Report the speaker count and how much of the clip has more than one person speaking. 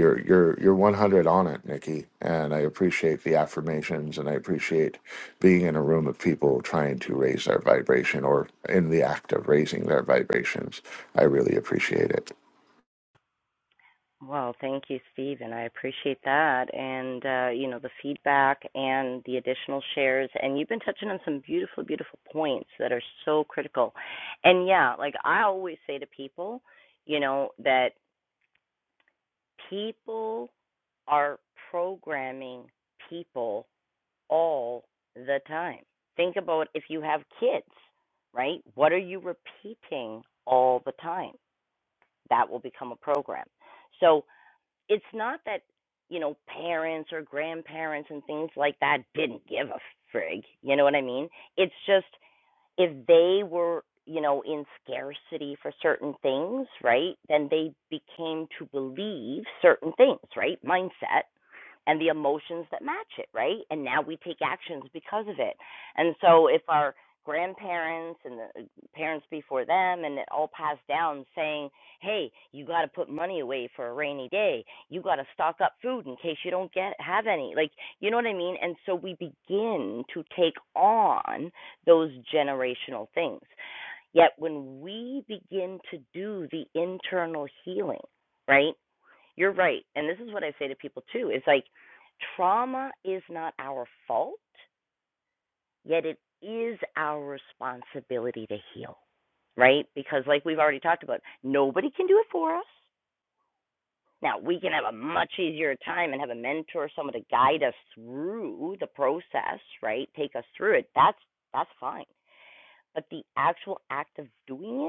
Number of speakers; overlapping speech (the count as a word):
two, no overlap